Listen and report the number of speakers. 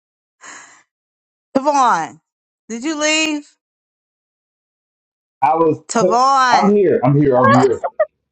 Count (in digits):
2